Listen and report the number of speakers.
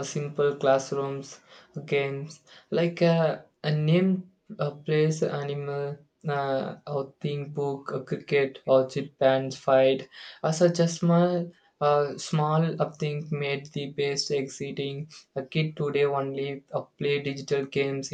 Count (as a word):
one